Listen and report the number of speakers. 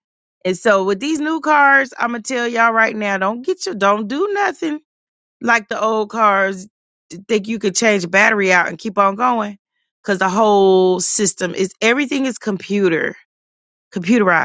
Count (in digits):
1